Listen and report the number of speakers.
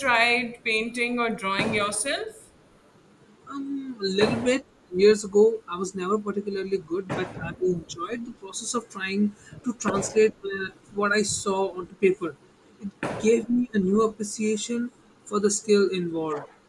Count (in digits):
2